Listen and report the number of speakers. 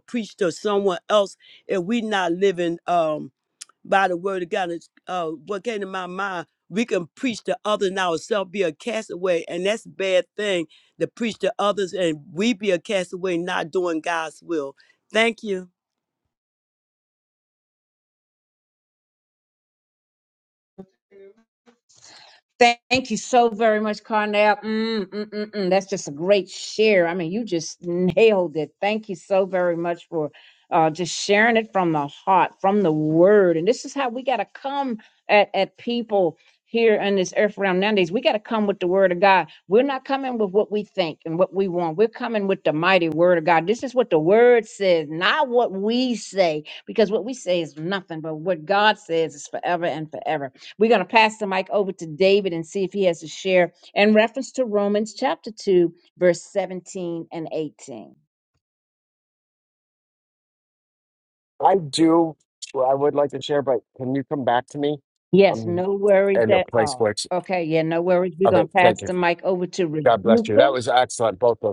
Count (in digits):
3